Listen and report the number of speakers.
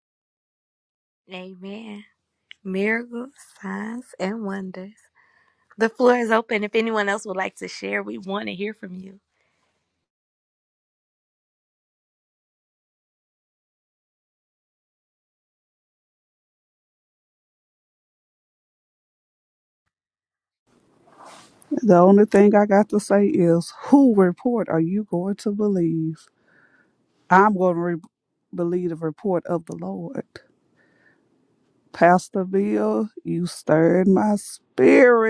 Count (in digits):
2